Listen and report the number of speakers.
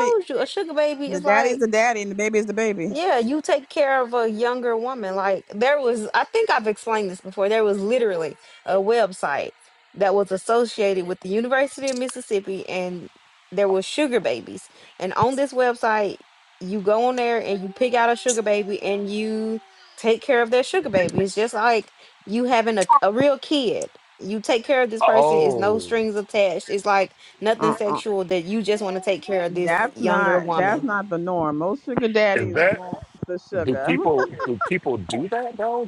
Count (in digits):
3